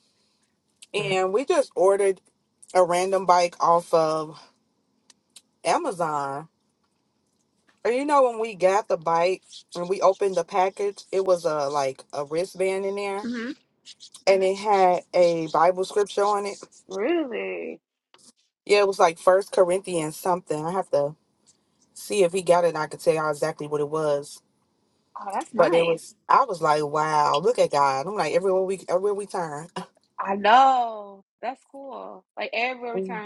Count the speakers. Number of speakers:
two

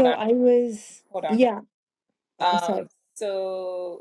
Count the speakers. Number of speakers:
two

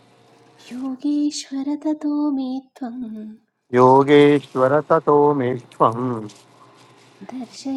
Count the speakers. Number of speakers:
two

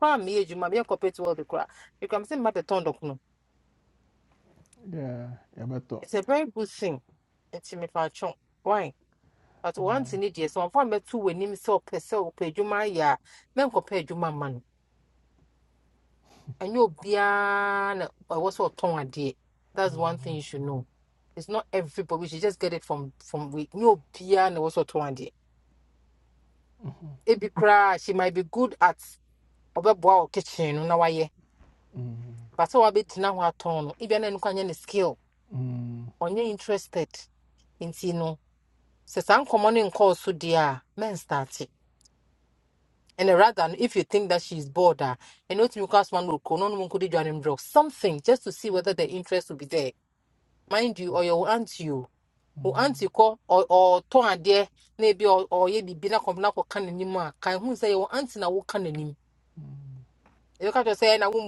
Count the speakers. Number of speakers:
two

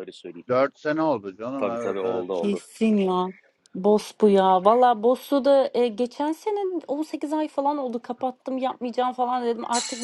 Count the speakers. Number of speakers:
three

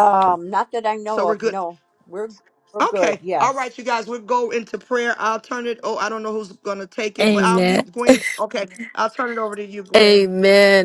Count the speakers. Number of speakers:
three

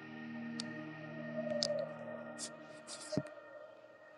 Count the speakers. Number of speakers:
zero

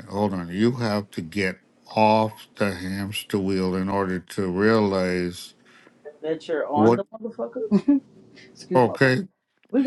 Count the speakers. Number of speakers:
two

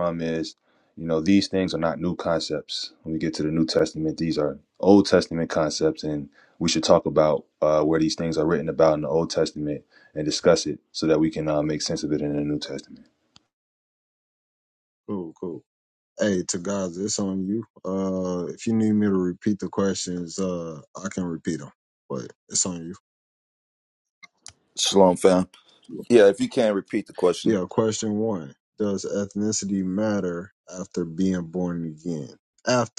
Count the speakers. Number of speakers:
three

